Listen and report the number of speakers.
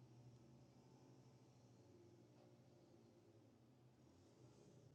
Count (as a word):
zero